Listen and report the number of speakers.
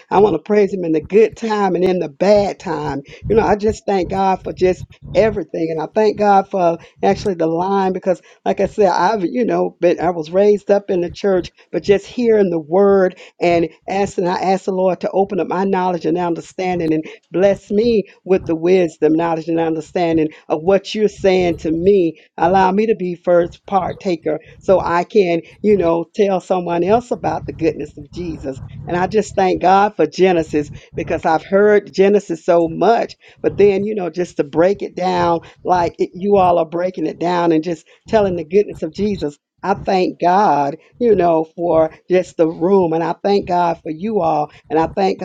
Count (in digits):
1